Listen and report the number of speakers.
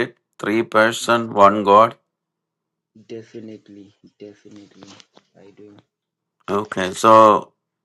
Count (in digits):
2